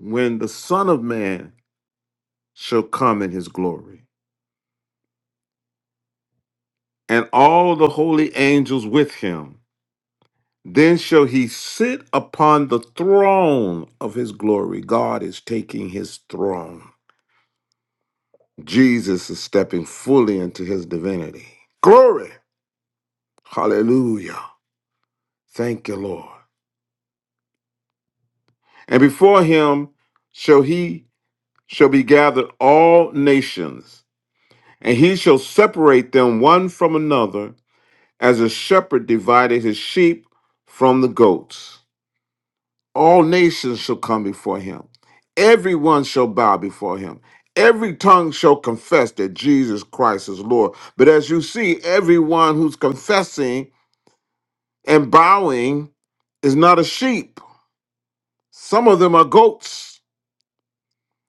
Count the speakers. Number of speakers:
one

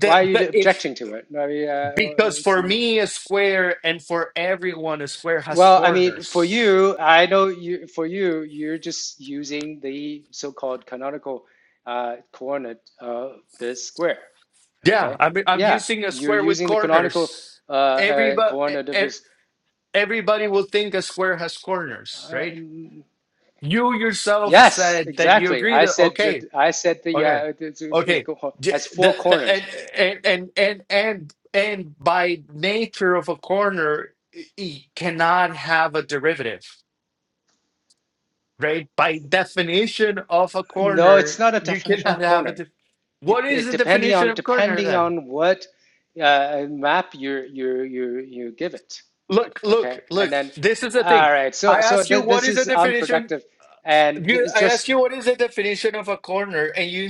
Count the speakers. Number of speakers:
two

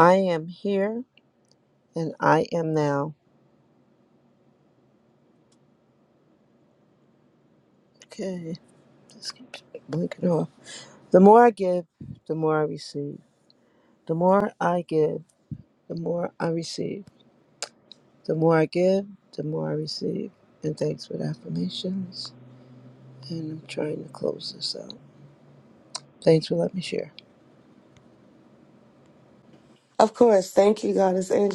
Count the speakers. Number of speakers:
two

